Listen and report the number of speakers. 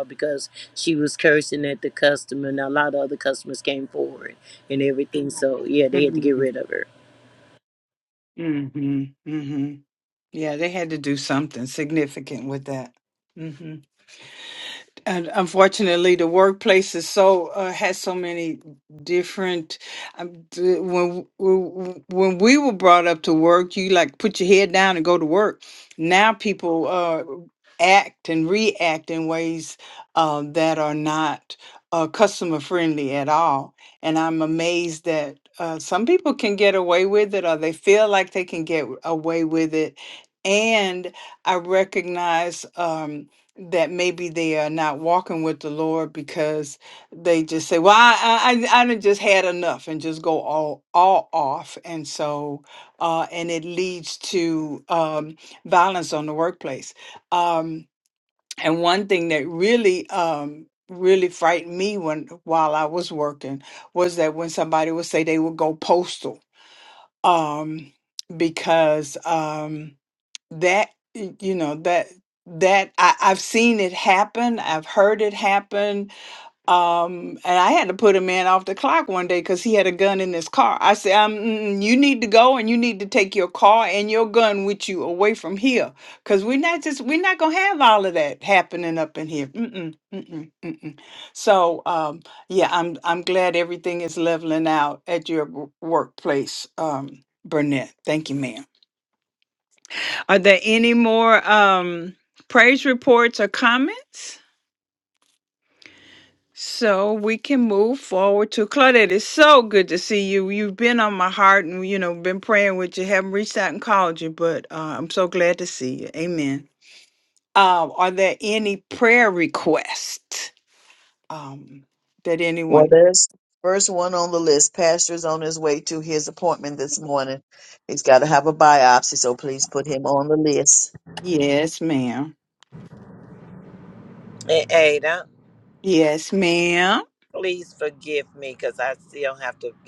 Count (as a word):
four